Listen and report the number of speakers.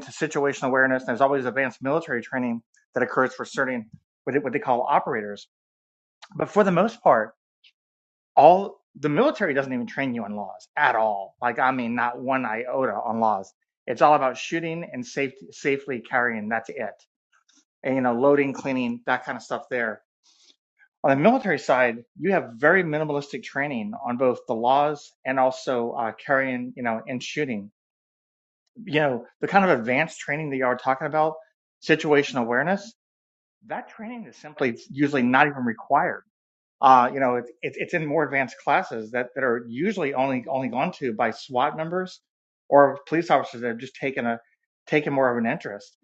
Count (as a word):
one